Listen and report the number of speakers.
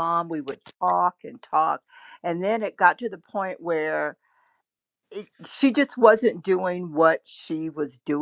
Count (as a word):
one